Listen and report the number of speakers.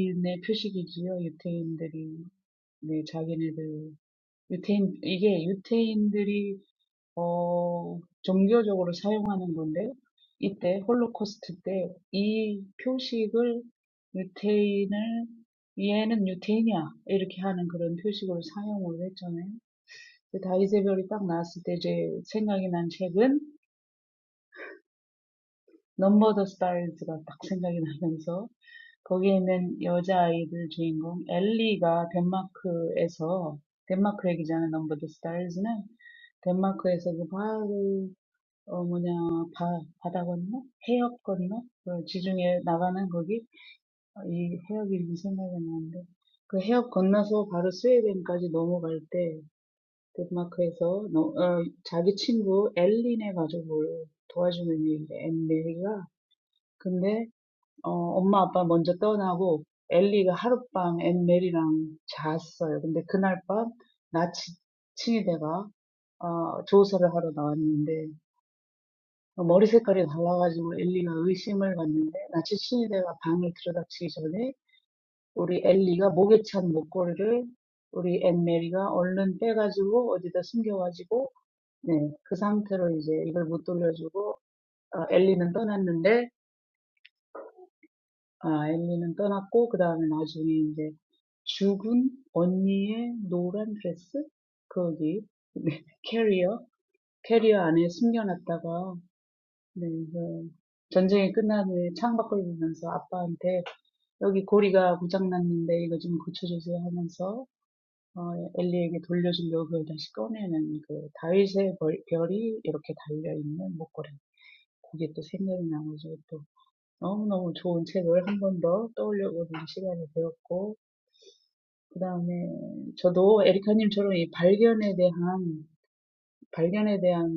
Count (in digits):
1